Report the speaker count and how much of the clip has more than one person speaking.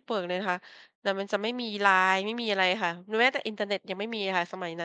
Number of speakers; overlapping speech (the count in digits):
1, no overlap